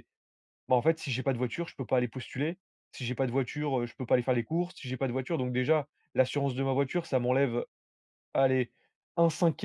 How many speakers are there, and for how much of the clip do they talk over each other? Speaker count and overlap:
1, no overlap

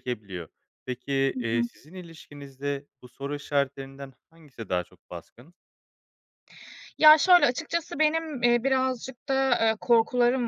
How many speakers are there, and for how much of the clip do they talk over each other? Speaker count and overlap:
2, about 3%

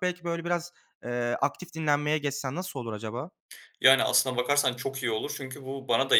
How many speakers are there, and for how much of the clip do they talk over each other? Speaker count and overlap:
2, no overlap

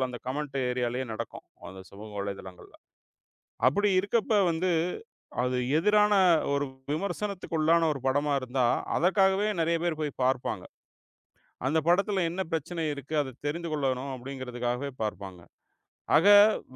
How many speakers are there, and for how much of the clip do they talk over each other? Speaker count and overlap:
1, no overlap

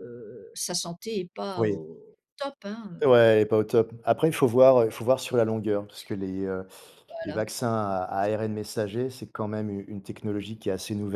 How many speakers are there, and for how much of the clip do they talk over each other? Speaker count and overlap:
2, about 4%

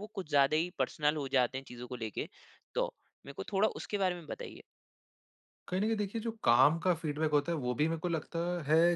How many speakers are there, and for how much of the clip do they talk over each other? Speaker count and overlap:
2, no overlap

